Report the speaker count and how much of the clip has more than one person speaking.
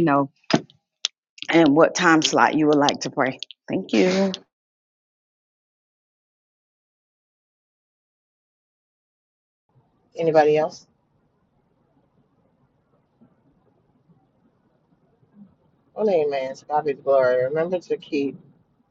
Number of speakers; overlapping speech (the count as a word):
two, no overlap